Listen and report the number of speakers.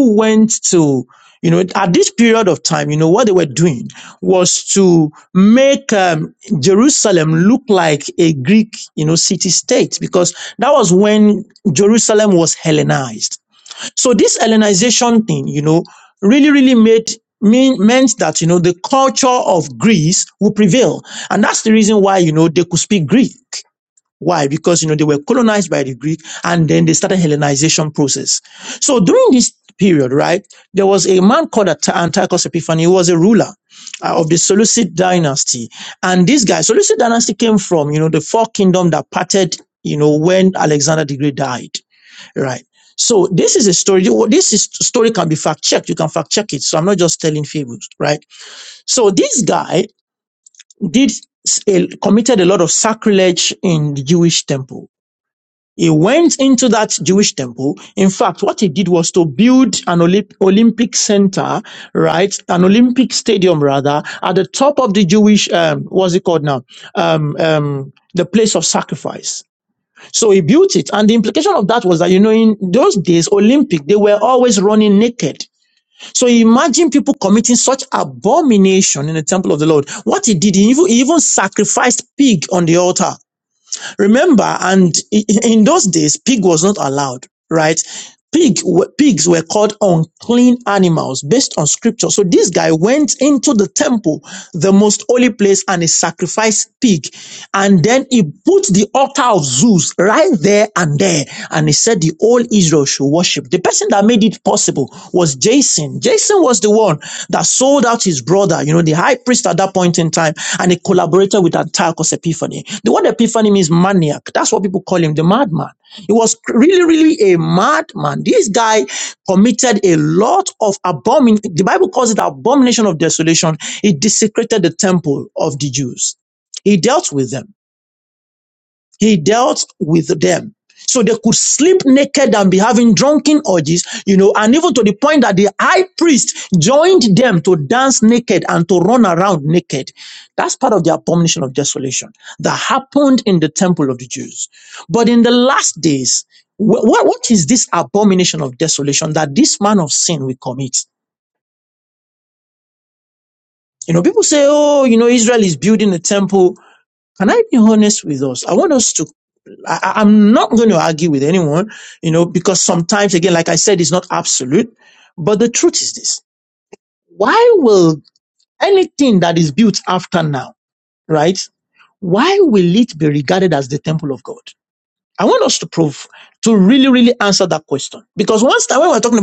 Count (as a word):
one